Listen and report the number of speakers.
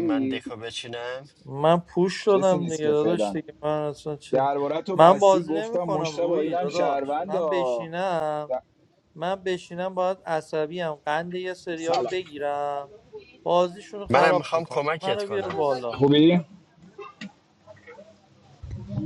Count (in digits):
3